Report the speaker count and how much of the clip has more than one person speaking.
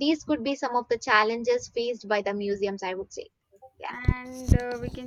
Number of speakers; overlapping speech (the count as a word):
two, about 1%